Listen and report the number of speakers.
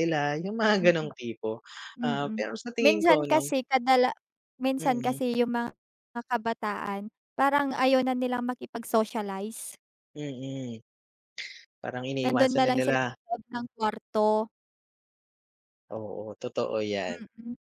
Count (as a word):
two